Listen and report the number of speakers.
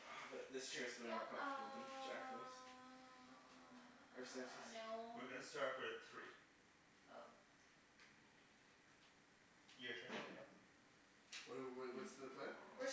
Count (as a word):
four